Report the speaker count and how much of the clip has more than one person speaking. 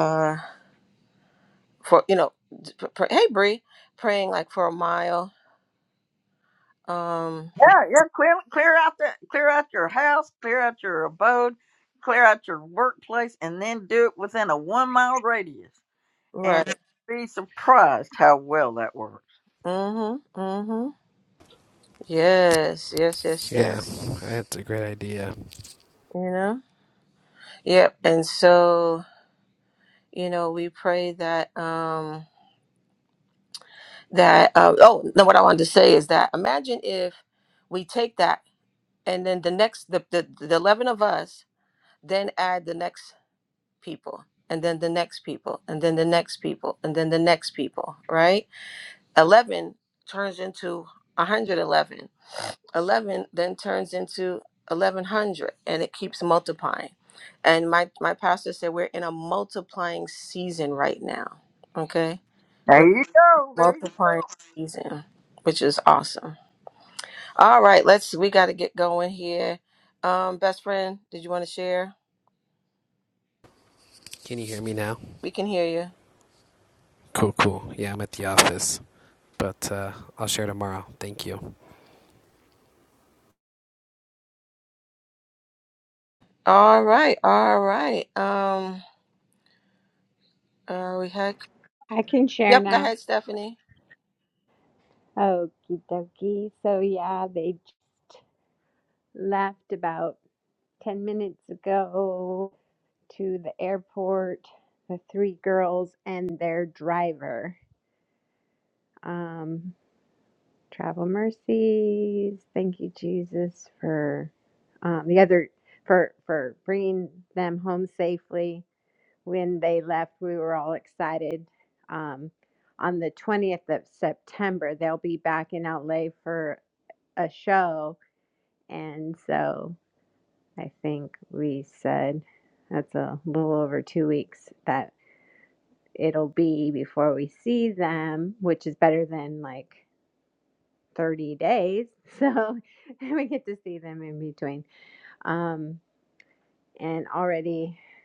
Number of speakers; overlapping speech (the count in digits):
4, about 1%